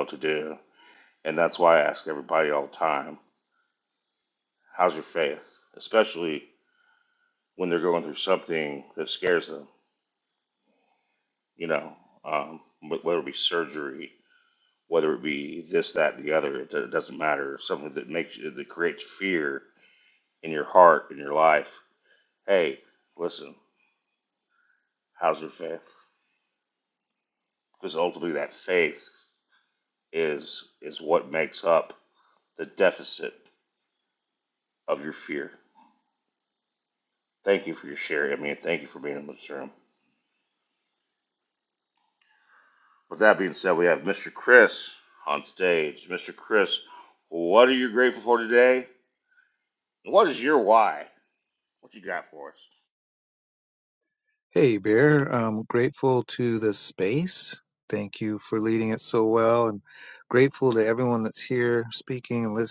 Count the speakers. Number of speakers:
2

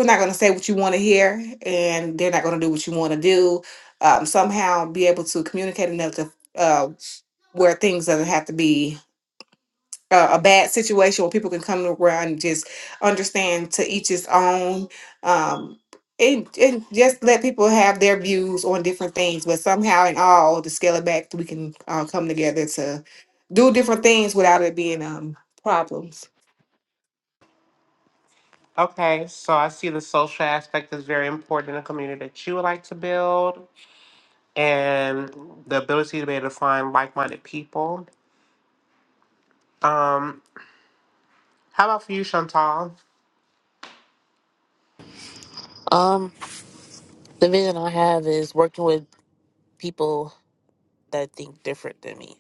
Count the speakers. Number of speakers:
3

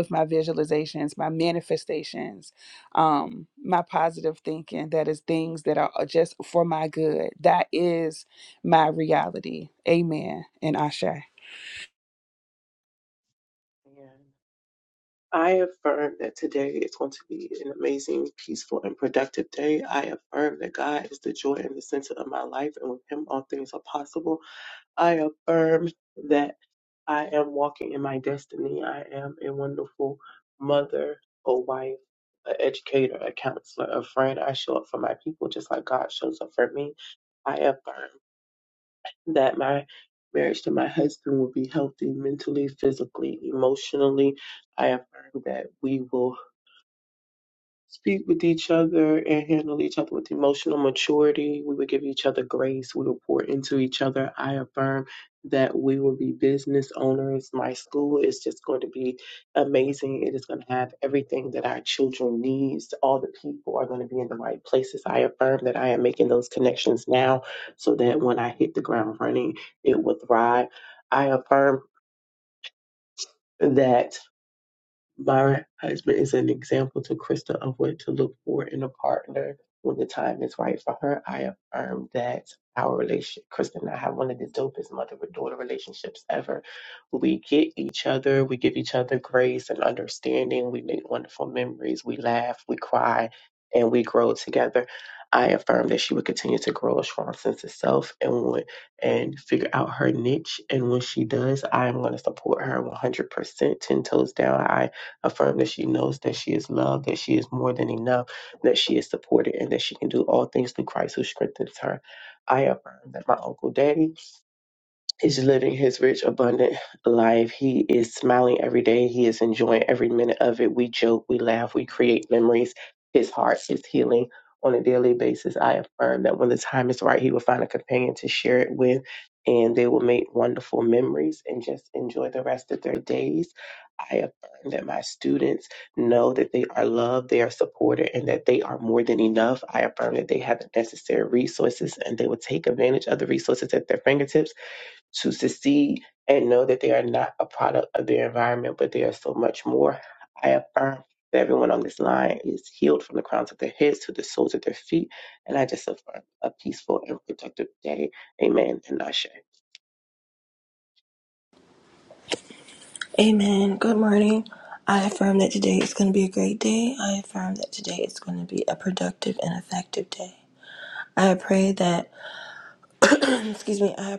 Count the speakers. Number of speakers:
3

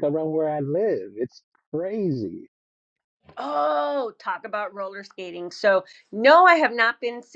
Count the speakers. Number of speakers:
2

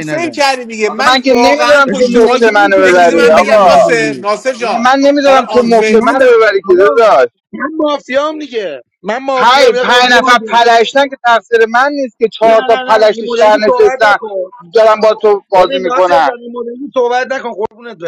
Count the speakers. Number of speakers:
3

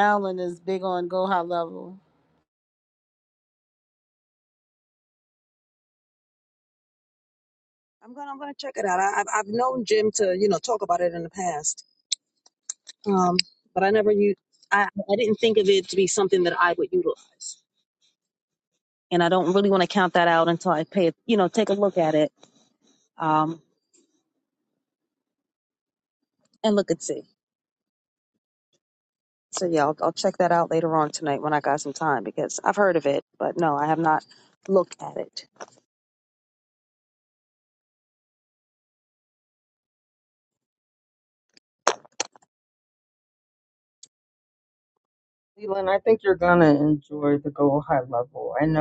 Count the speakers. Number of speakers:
3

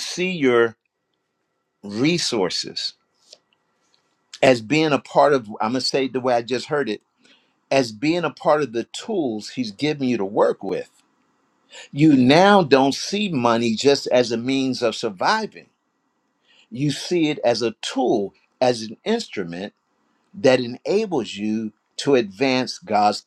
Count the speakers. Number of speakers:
1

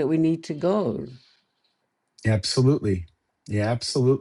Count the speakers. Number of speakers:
2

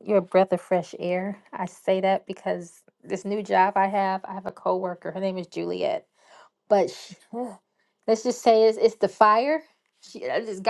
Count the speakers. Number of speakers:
1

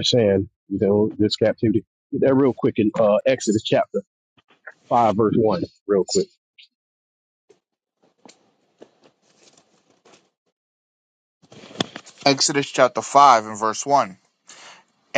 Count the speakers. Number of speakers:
2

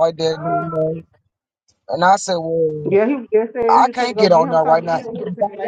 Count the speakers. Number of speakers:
2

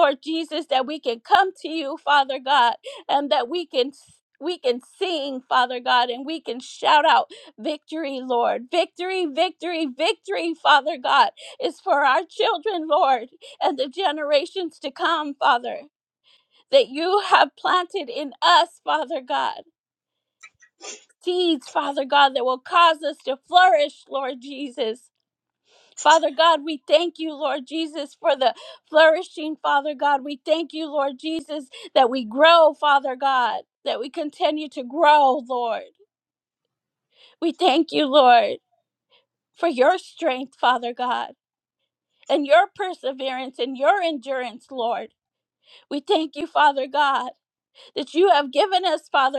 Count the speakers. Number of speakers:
1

